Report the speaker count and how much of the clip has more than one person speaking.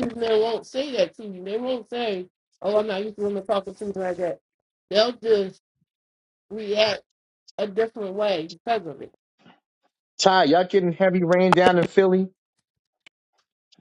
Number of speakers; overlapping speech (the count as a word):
two, no overlap